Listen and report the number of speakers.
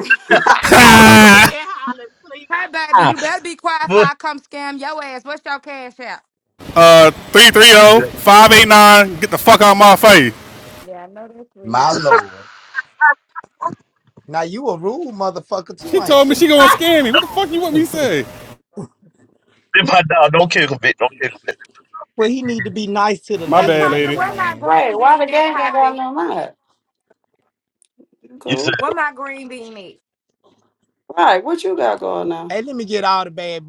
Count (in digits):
6